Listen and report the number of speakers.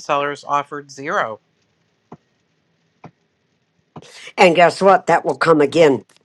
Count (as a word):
two